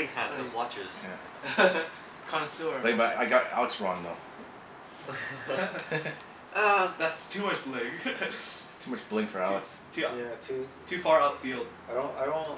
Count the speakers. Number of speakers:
four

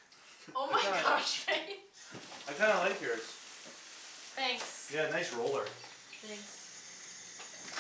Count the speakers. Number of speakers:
two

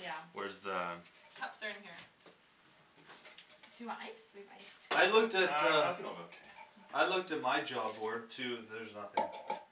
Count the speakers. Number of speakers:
three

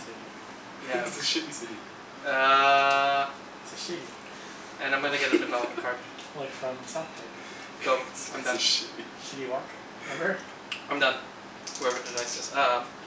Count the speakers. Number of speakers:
three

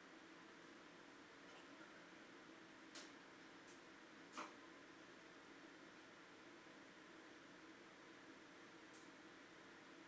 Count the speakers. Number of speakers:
zero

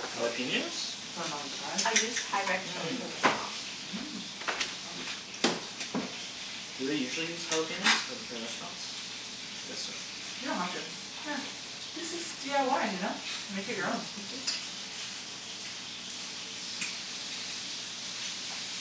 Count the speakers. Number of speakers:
three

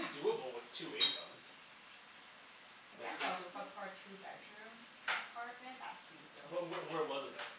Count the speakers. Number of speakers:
two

